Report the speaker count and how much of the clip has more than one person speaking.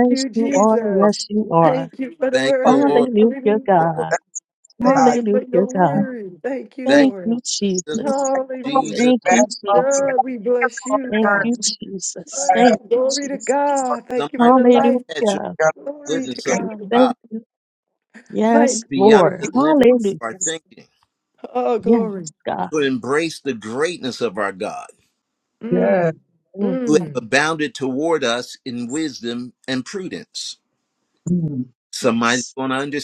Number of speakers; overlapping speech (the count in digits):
4, about 41%